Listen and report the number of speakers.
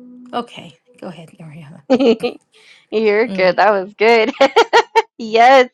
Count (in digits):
2